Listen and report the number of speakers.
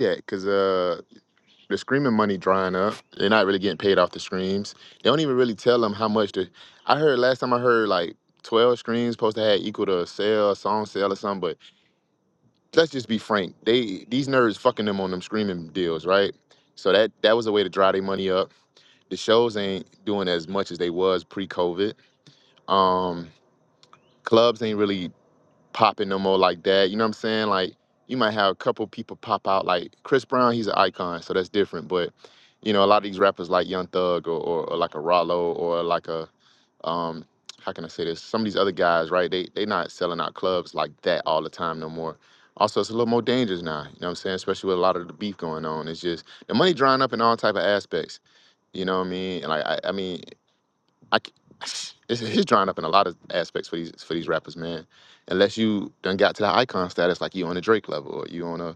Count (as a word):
one